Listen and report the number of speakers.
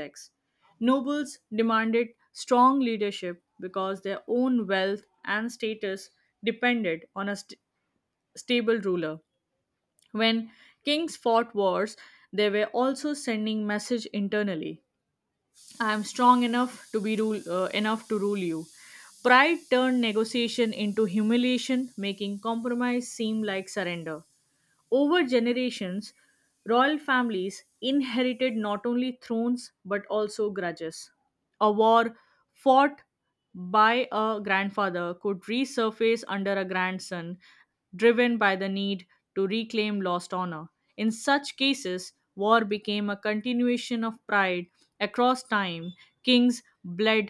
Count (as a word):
one